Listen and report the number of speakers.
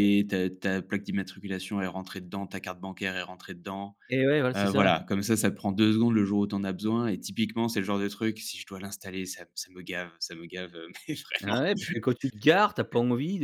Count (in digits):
2